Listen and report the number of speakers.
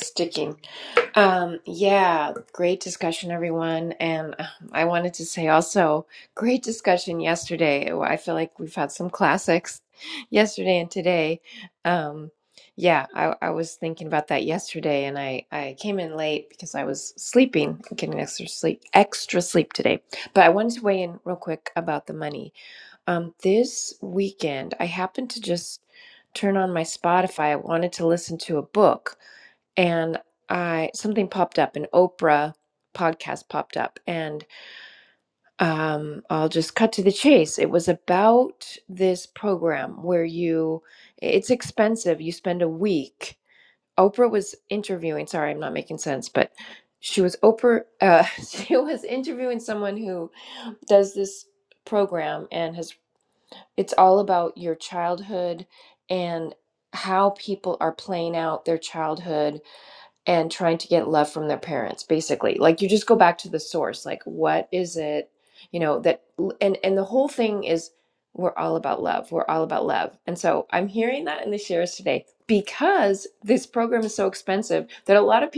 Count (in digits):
1